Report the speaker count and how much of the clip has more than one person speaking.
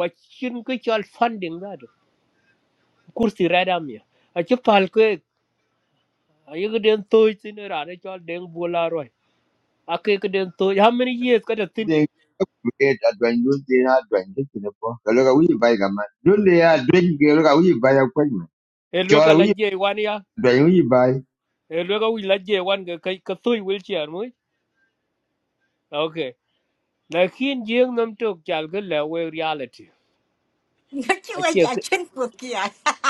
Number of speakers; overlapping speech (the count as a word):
three, about 3%